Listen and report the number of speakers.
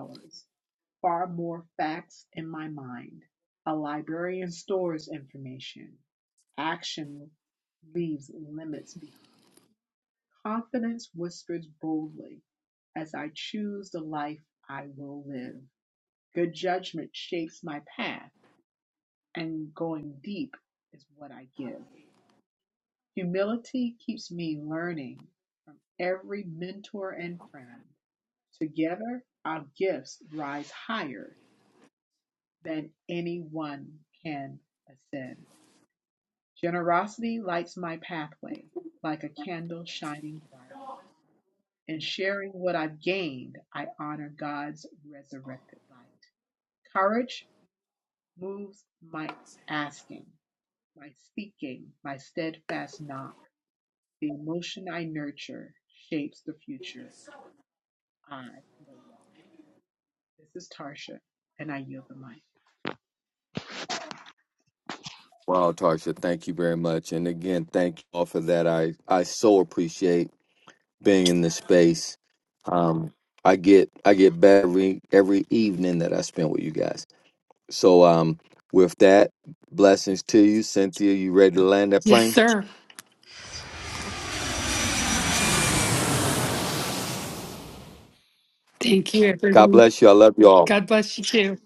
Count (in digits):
3